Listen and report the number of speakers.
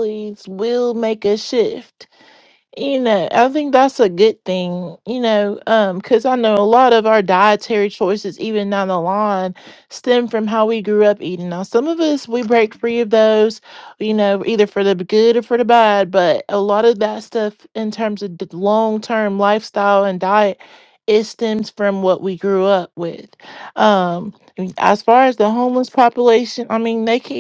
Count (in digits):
1